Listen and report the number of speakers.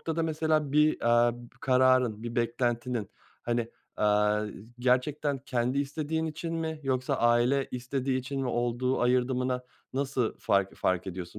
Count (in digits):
1